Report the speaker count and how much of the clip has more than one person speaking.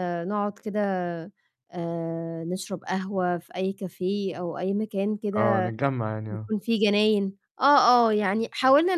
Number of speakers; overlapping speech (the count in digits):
2, about 5%